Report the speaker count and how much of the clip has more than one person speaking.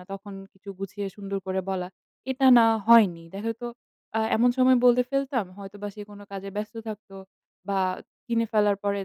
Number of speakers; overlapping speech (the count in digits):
1, no overlap